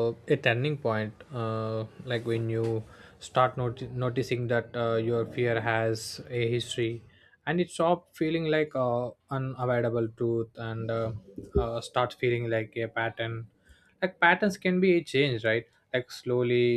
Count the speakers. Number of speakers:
one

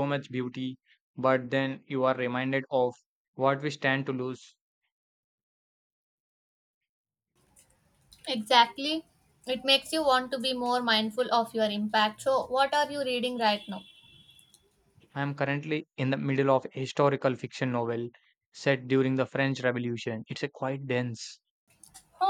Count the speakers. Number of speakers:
two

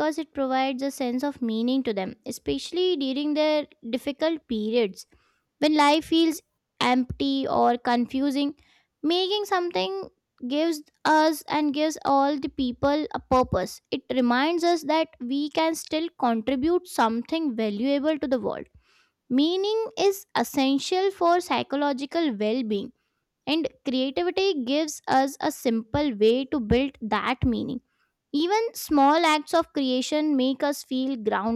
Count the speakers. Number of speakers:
one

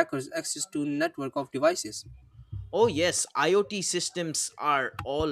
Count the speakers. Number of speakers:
two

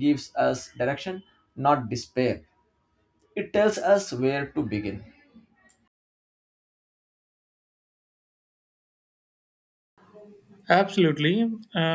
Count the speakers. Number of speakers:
two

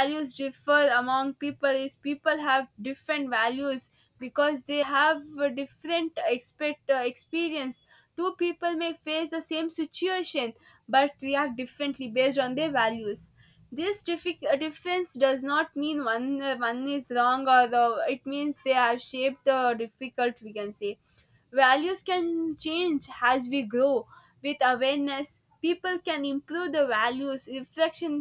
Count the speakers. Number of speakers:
one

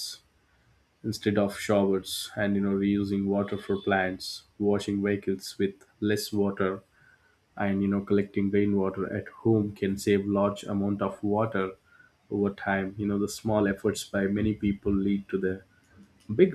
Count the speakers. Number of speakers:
one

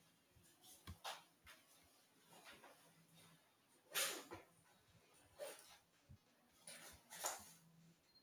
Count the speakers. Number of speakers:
zero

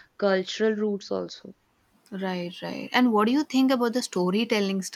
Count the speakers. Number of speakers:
two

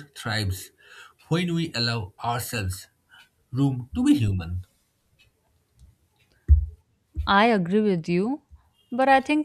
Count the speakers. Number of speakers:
two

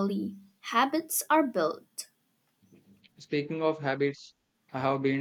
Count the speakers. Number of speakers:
two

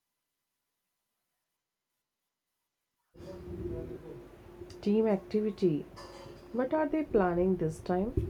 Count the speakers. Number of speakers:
one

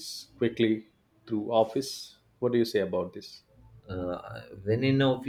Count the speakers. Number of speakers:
two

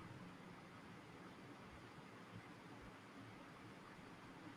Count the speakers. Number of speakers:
zero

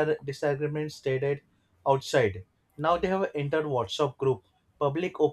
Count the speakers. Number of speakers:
one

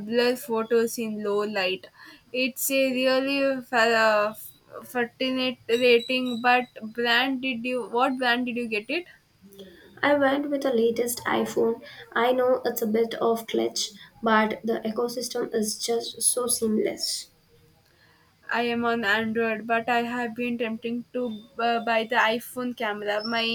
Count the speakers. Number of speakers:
two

